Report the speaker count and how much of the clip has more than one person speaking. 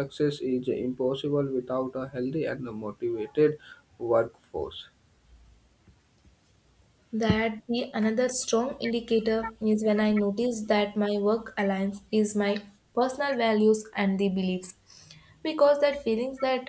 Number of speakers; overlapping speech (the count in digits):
2, no overlap